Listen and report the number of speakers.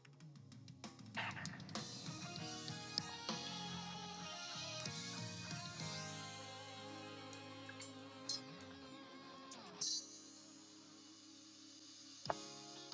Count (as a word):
zero